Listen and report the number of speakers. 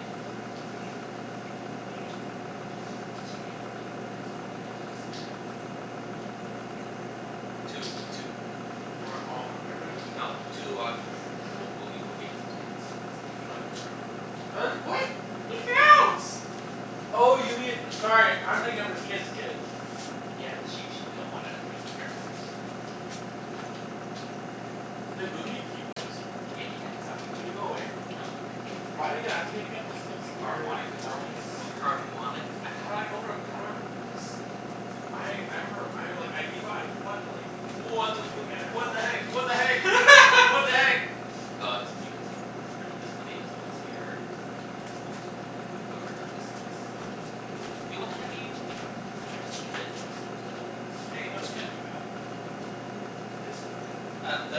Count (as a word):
three